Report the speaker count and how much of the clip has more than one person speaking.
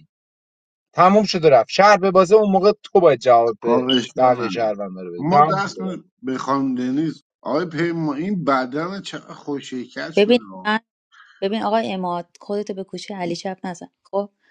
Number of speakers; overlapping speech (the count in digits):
3, about 15%